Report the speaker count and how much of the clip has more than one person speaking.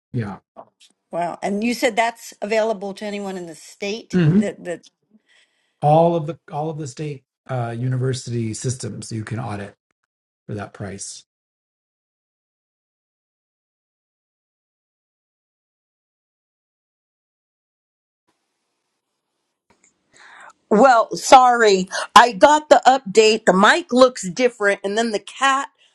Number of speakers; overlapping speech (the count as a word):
three, about 1%